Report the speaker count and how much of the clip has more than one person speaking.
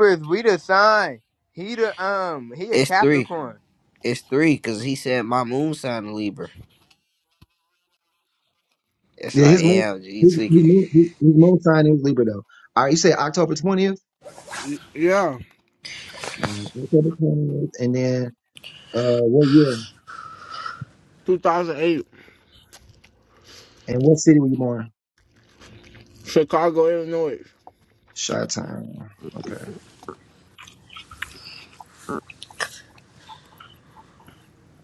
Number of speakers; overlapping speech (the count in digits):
4, about 5%